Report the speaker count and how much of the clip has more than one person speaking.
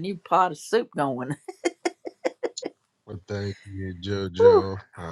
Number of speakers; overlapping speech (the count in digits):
2, about 5%